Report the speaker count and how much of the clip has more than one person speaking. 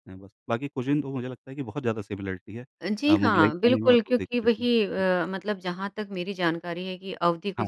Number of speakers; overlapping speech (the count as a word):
two, about 23%